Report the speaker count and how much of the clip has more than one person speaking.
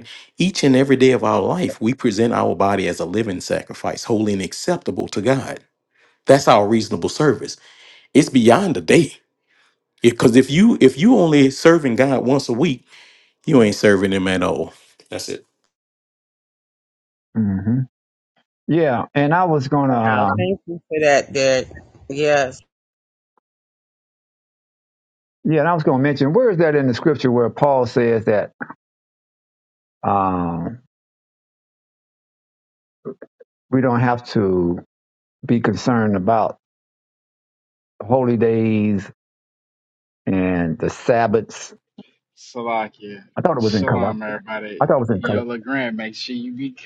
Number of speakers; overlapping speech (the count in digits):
4, about 3%